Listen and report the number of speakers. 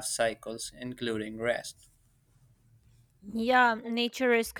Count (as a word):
two